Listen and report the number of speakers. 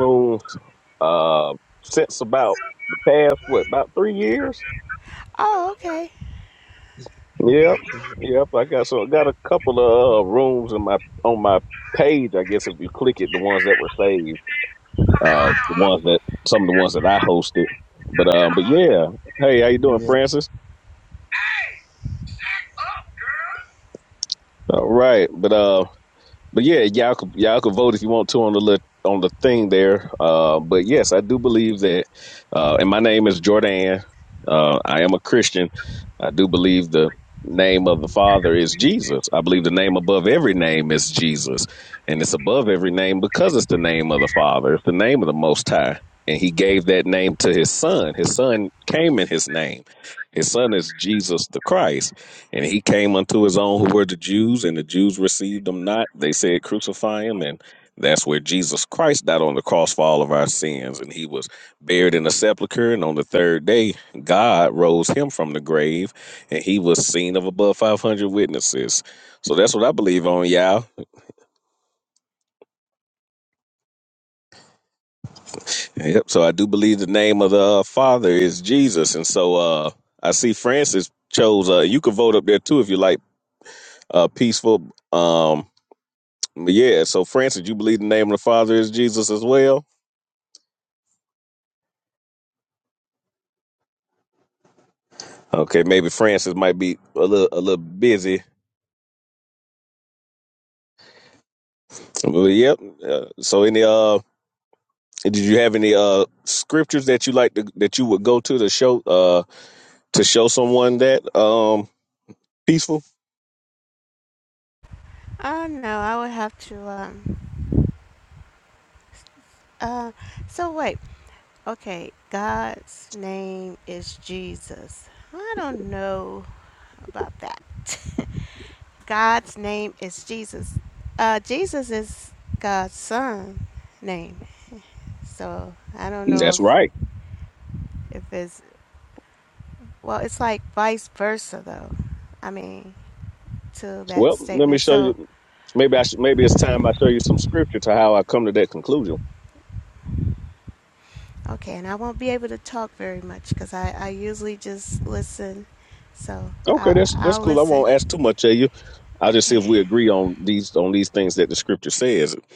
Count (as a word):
three